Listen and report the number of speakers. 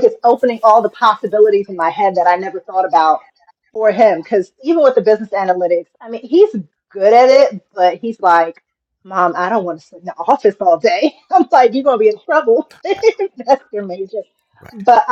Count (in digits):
1